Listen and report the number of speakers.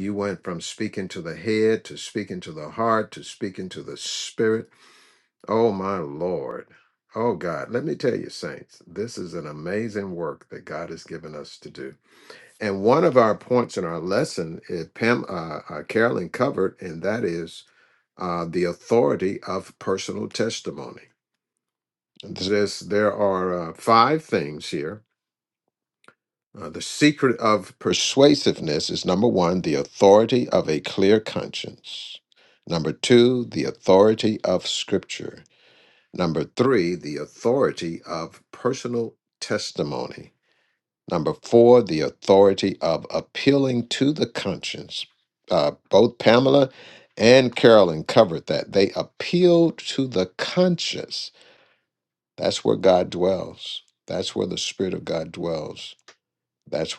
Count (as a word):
one